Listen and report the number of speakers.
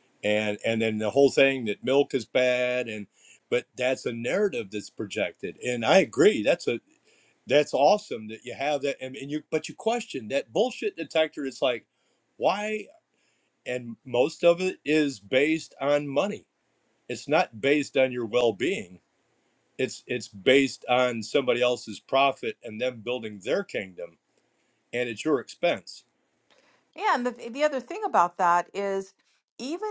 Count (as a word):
two